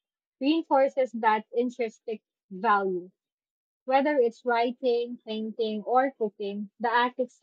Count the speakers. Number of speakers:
1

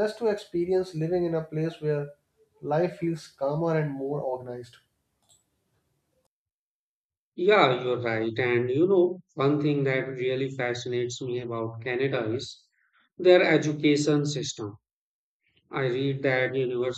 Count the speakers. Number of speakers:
2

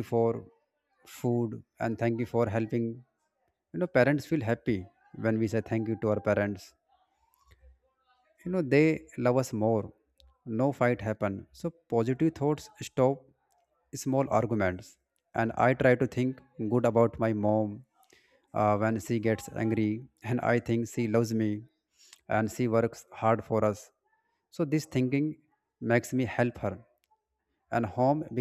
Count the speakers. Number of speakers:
1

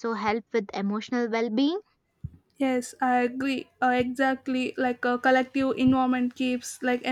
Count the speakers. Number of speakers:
2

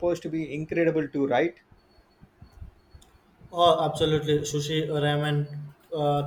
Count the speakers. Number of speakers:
2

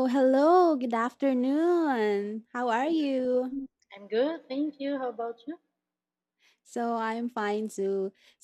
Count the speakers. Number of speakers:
2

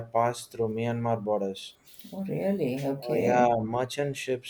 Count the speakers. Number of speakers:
2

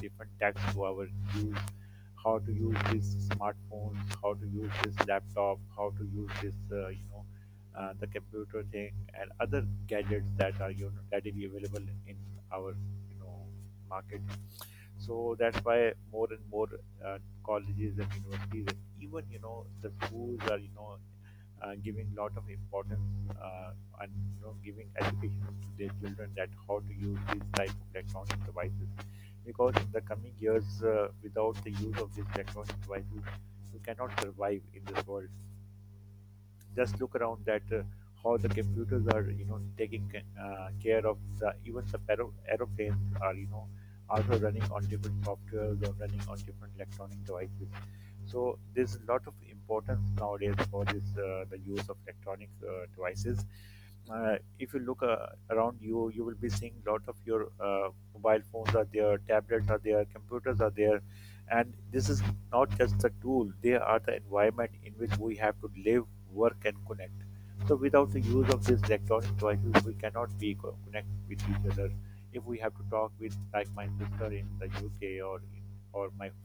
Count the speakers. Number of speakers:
1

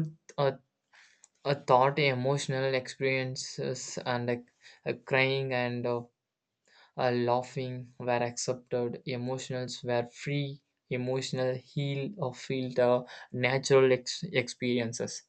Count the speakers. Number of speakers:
1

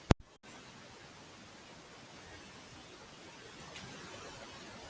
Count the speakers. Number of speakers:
0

